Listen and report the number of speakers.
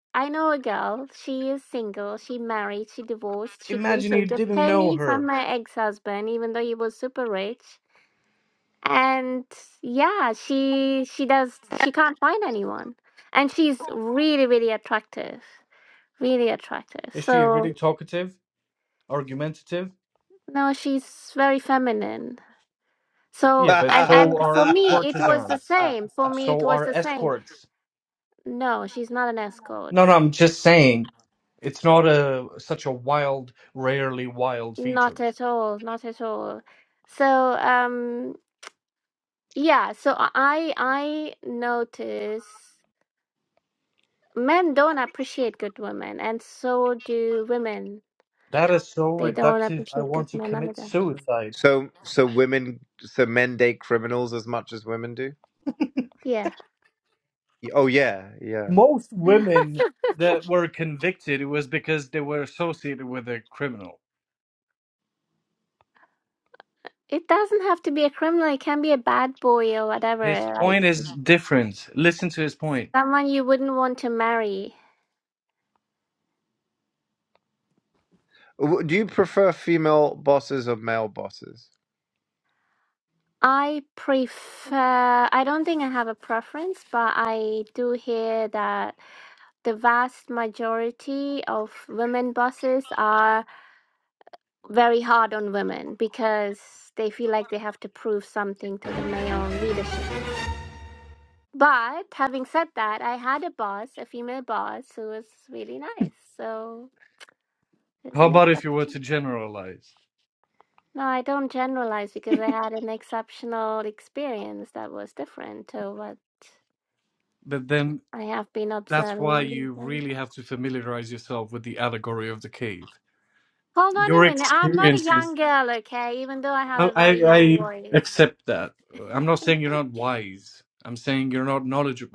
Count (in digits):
3